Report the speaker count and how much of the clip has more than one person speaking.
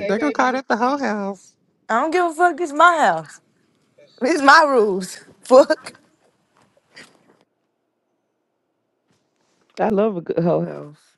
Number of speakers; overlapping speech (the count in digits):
3, no overlap